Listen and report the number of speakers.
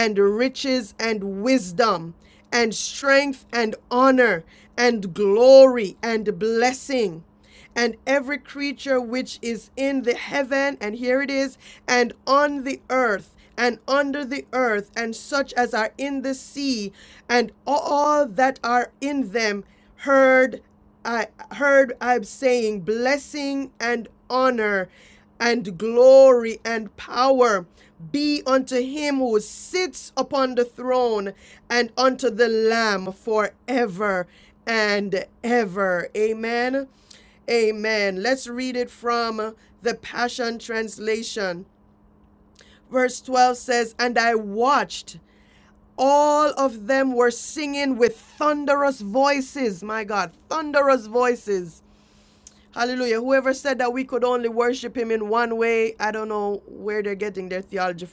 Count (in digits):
1